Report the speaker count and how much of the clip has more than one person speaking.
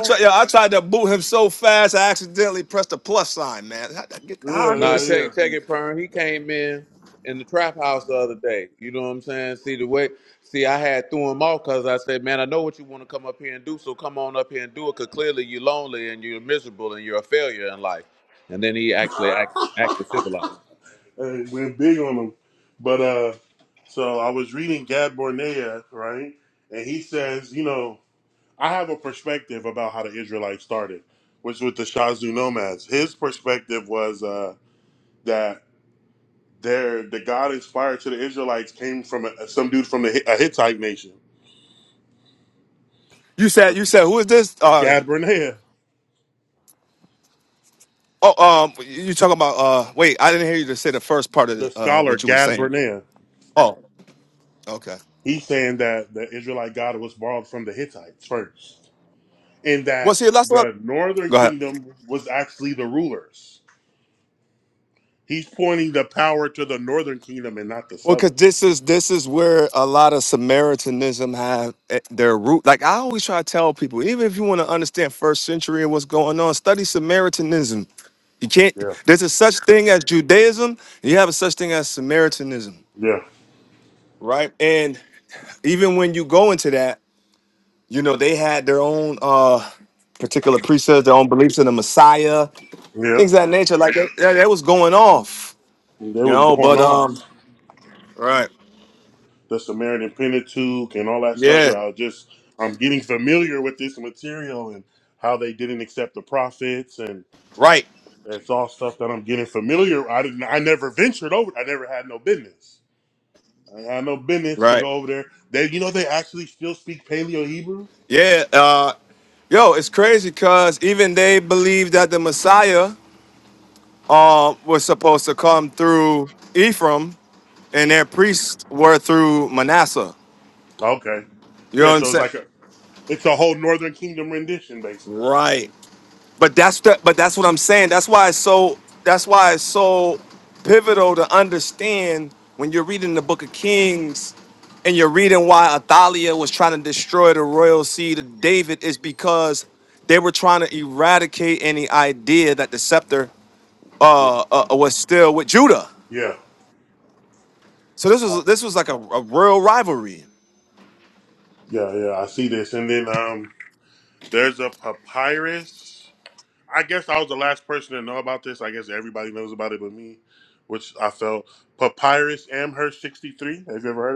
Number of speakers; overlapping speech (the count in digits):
3, about 3%